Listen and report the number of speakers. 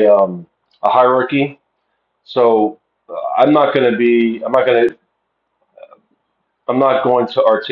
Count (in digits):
1